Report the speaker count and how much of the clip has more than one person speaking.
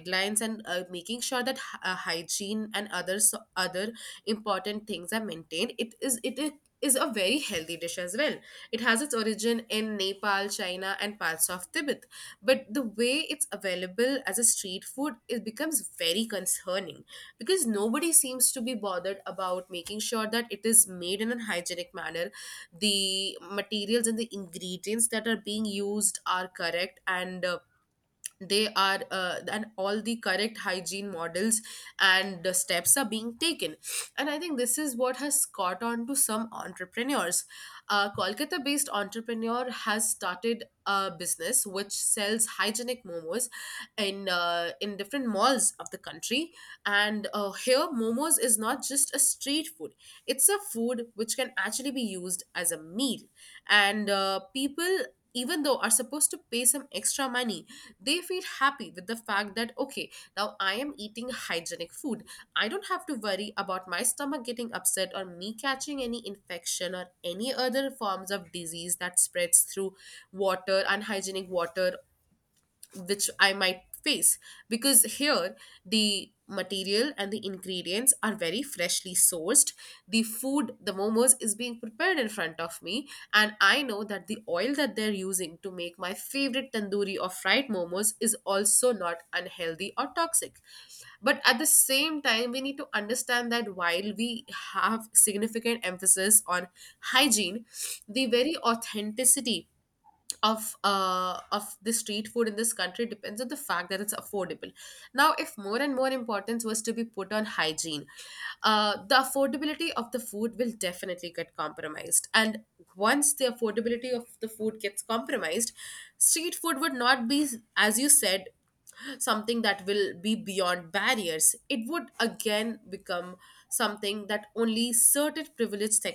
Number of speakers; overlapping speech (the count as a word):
one, no overlap